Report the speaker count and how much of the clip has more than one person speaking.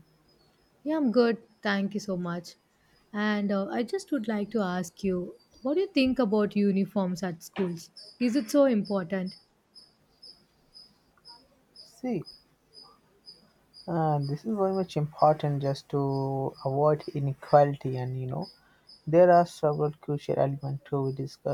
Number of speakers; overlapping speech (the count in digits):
2, no overlap